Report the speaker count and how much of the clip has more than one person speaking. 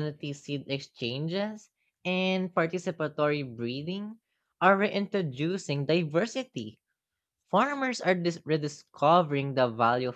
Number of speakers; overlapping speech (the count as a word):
one, no overlap